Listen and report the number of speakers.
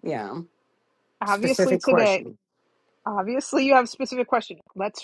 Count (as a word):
two